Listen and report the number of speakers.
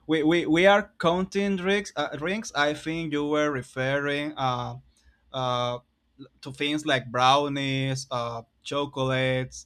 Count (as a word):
one